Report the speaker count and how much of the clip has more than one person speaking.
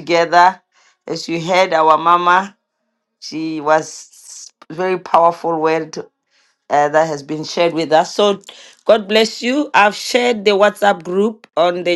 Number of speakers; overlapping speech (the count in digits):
1, no overlap